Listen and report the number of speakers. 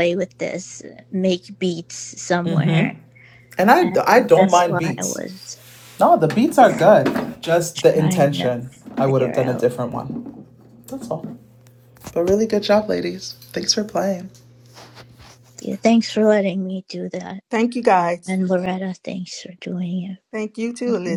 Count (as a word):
three